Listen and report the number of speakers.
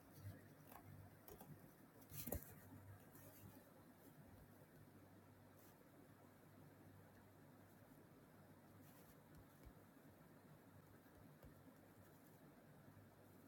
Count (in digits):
0